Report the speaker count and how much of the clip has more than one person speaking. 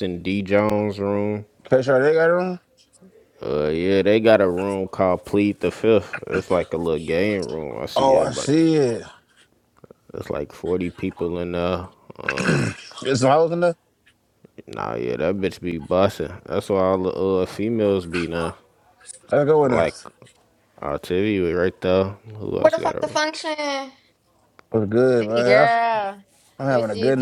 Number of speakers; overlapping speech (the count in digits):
3, about 9%